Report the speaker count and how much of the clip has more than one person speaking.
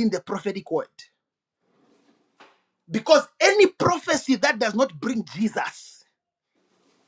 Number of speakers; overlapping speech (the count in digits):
1, no overlap